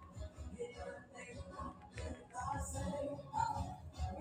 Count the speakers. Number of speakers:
0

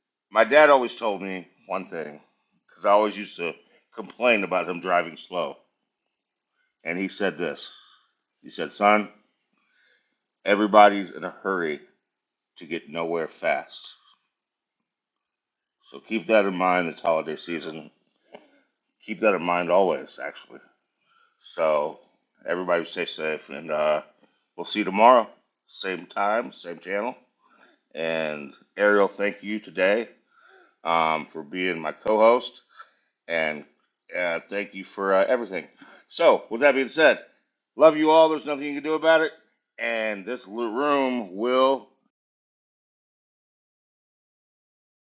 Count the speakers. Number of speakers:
1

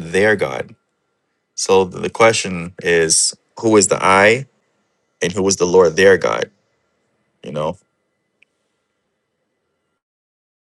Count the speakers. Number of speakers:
1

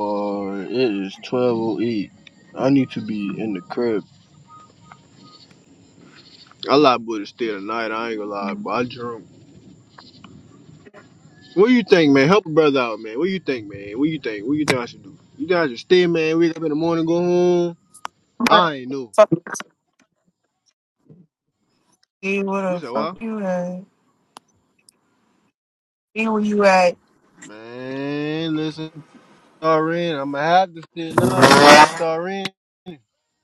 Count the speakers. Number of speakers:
2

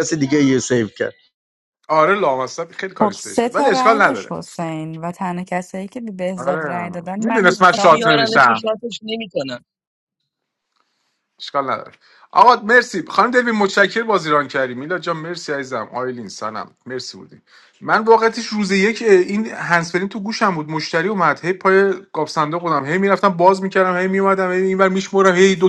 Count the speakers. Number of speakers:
4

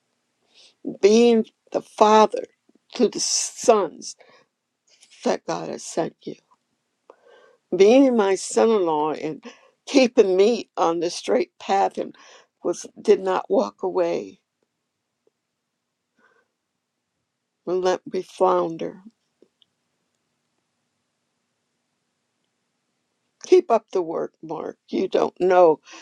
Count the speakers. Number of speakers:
1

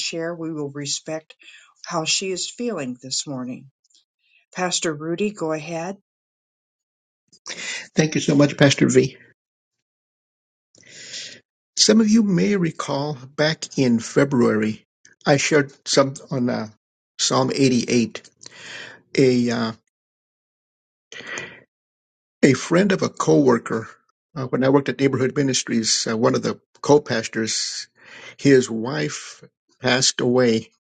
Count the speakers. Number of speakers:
2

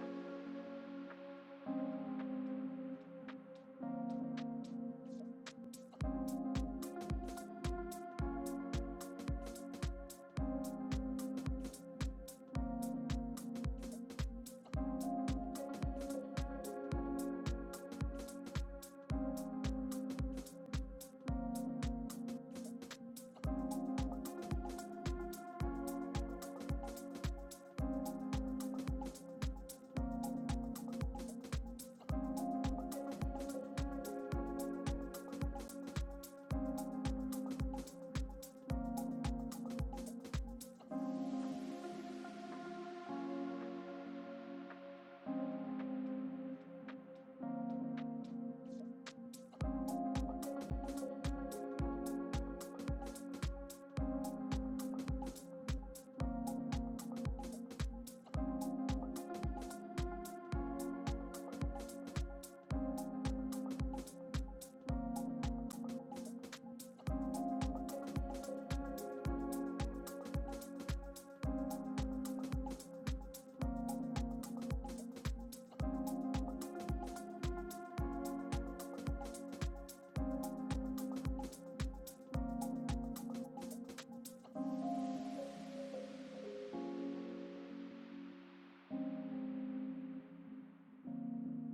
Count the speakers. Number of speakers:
0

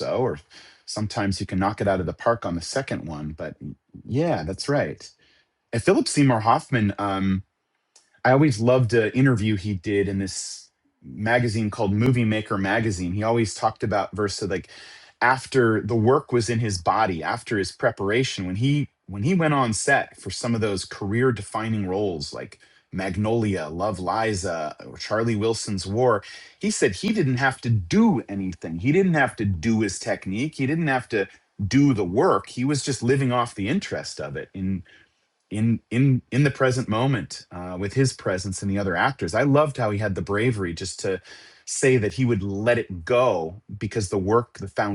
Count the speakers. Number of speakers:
1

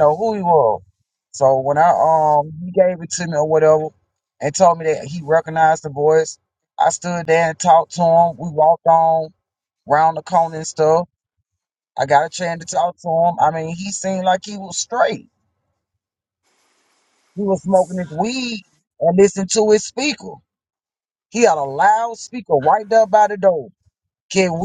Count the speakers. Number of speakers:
1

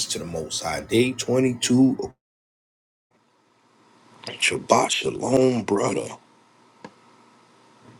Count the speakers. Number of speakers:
1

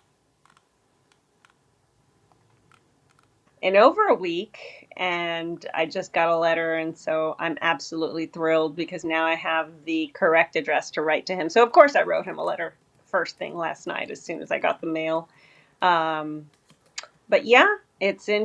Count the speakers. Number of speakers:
1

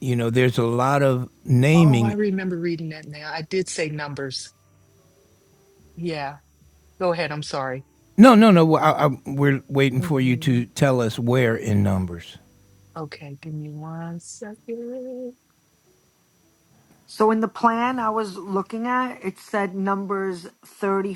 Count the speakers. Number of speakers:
3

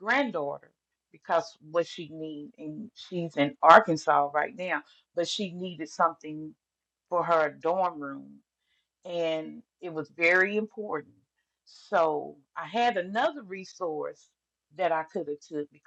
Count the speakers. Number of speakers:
1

